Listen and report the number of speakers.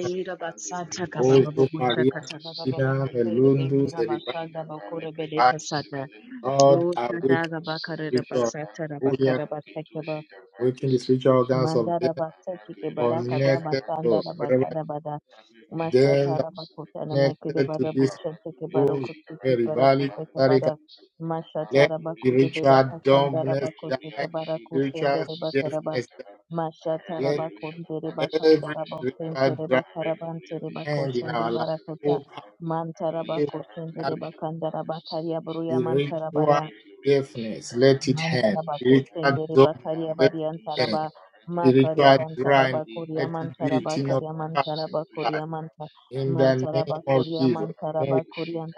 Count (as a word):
two